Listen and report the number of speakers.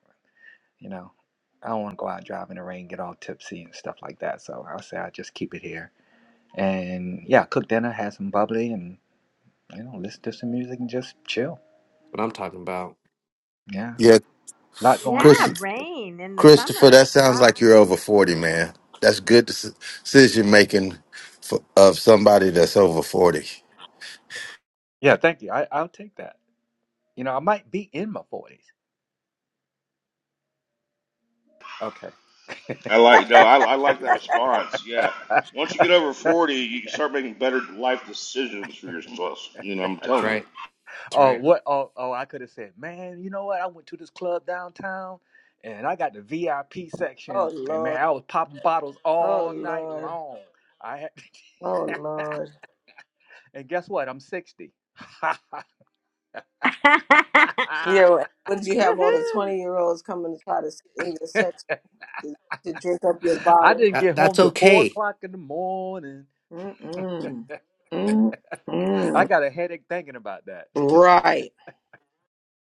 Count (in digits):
6